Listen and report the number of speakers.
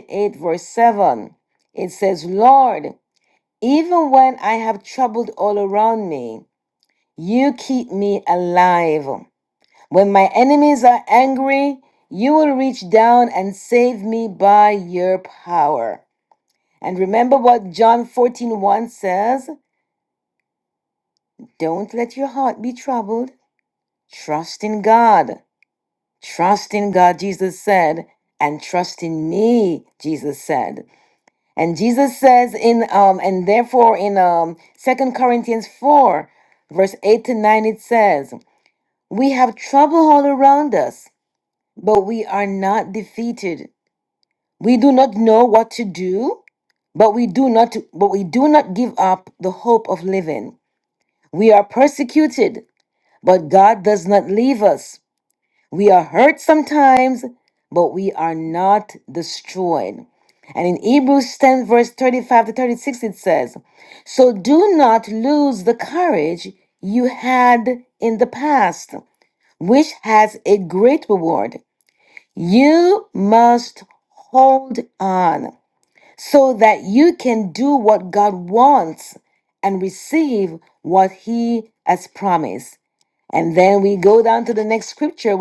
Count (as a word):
one